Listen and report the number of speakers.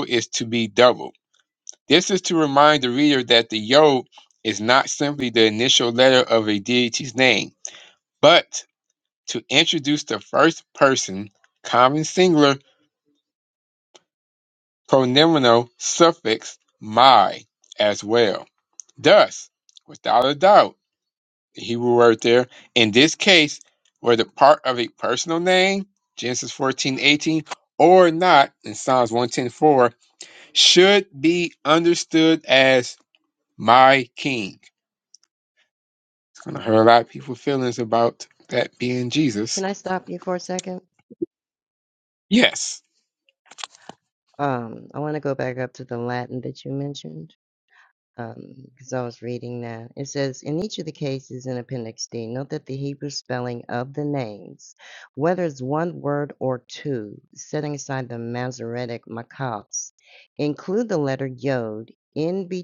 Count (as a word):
two